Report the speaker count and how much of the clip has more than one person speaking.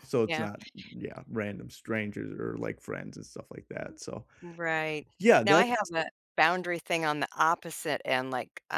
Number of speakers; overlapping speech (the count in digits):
2, about 6%